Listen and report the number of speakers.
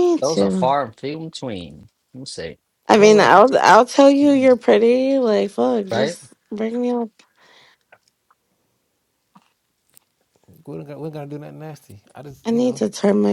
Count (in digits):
3